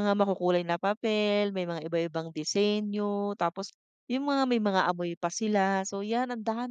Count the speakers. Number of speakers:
1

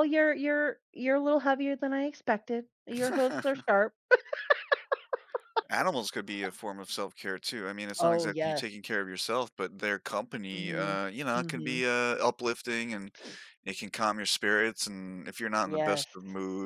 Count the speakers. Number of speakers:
2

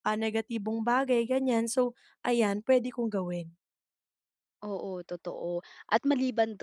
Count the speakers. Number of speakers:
2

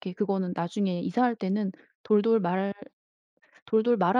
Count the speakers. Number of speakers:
1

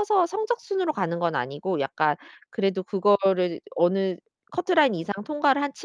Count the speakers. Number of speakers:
1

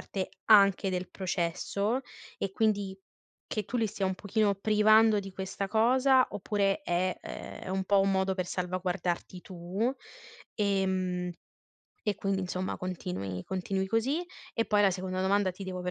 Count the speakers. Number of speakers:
1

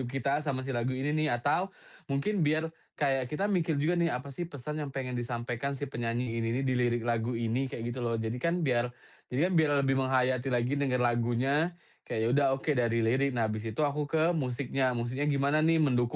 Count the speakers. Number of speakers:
1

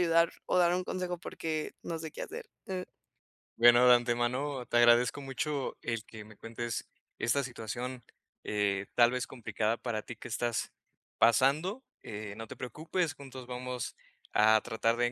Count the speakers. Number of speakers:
2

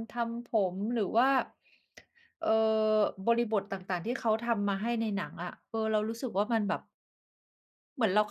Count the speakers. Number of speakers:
1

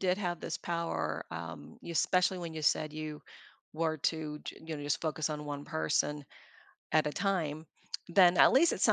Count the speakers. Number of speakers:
1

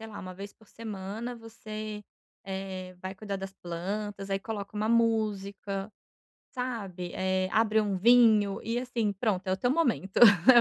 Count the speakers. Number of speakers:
1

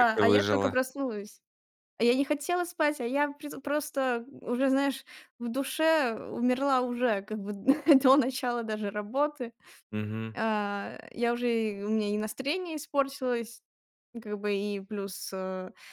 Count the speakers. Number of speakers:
2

